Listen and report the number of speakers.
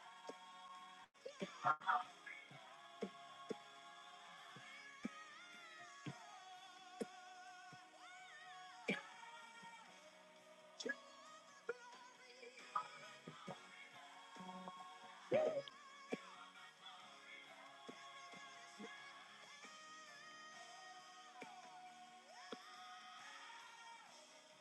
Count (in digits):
0